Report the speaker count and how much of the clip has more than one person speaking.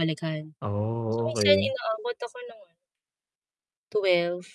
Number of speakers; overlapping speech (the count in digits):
2, about 11%